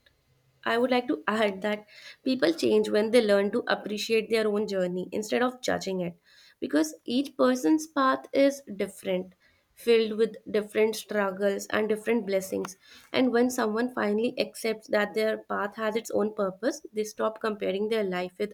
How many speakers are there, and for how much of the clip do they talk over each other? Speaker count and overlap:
one, no overlap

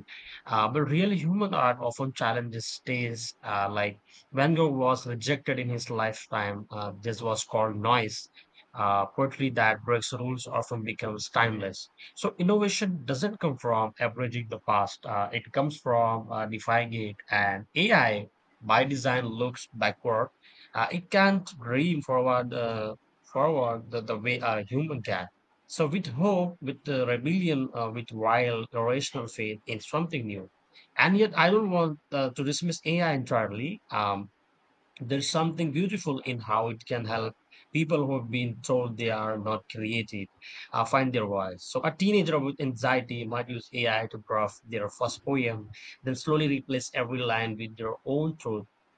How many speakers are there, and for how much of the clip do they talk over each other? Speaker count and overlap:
one, no overlap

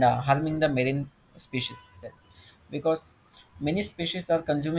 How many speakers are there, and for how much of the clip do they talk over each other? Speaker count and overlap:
one, no overlap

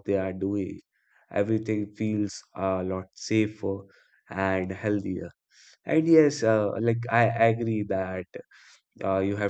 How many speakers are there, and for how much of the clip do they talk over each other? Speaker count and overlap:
one, no overlap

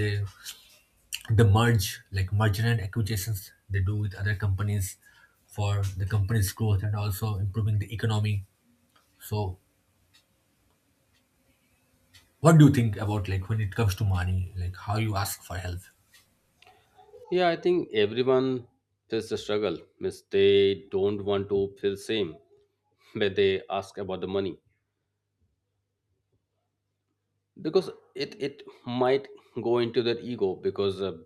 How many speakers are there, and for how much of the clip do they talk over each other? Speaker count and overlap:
two, no overlap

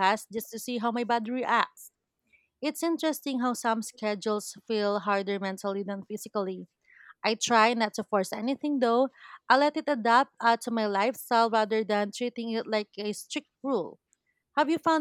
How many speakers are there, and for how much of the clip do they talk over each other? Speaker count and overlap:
one, no overlap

